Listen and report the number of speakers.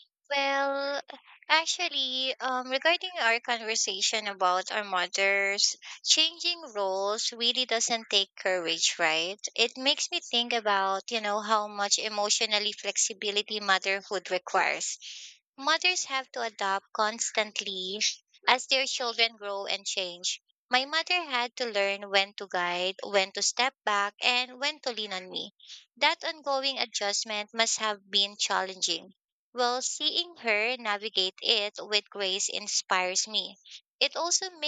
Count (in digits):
1